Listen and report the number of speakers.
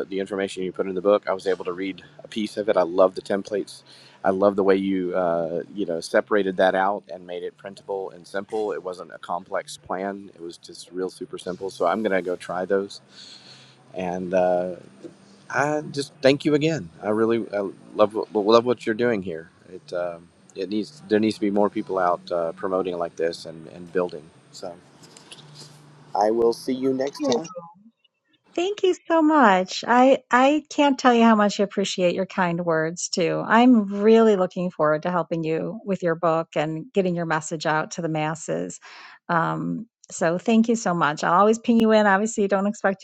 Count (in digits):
2